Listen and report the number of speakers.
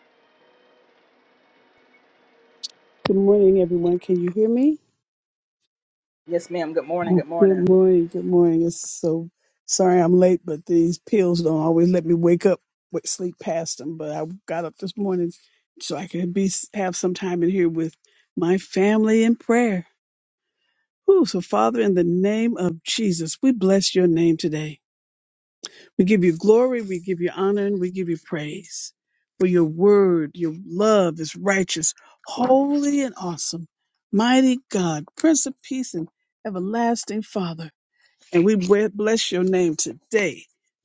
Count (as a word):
two